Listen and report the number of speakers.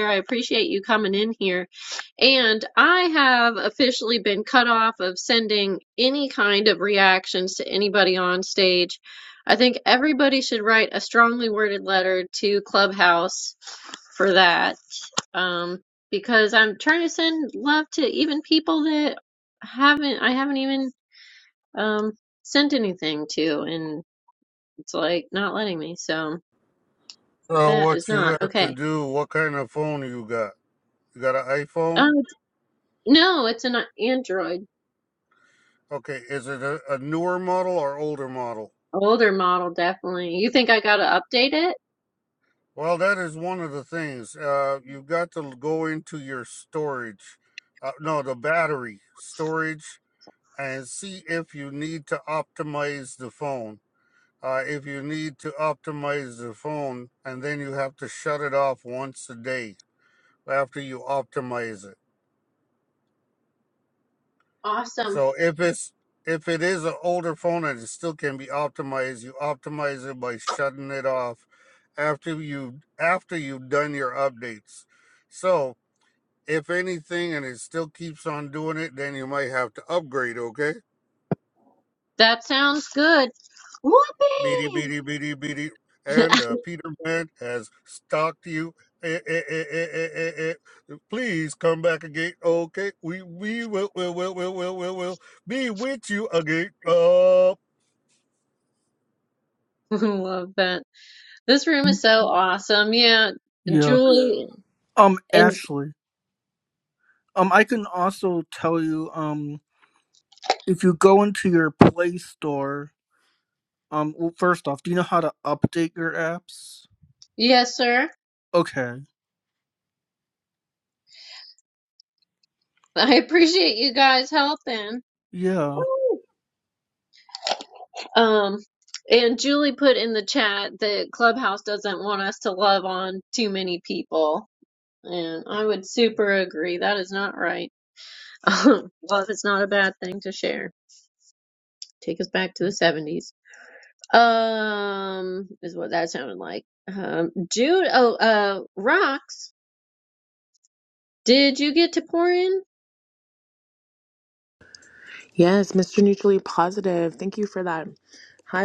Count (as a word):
four